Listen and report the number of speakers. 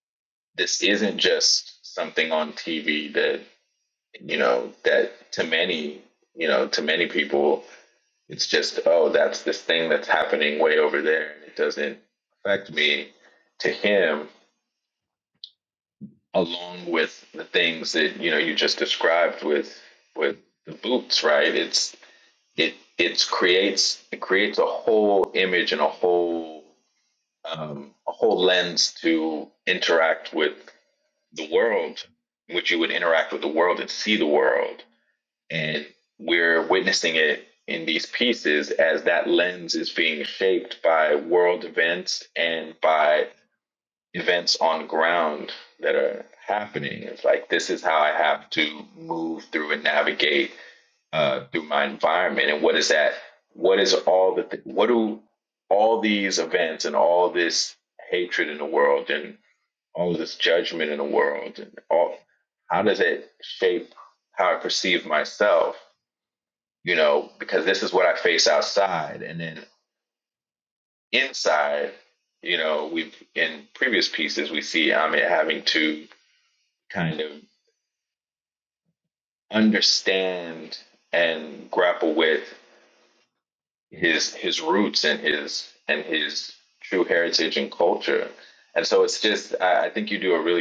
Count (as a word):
one